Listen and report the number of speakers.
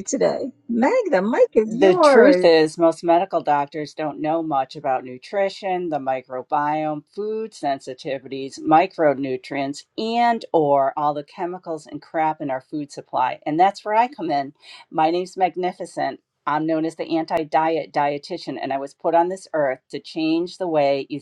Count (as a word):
two